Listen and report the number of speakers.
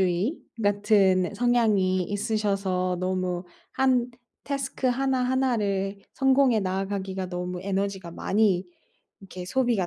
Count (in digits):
1